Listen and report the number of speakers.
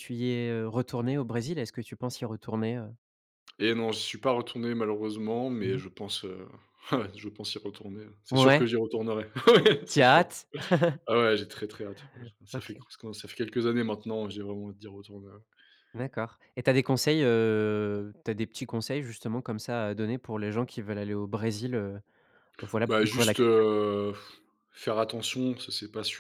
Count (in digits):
2